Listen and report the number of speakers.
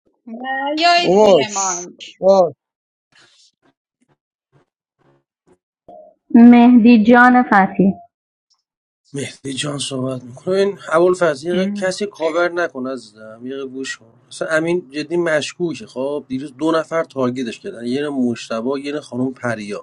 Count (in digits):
4